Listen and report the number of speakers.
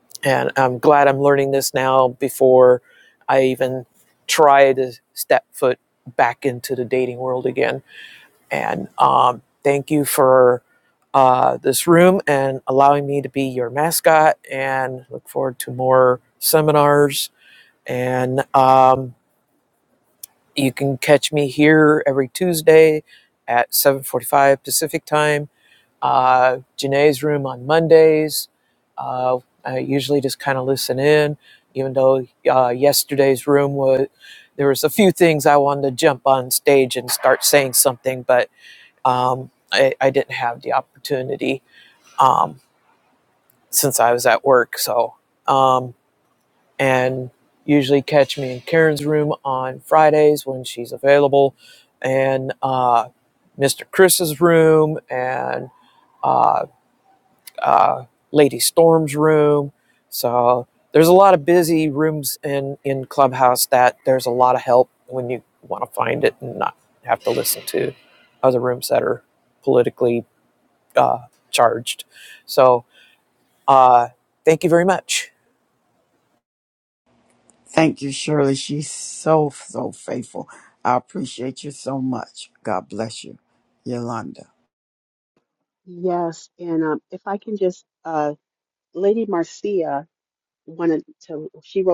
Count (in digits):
3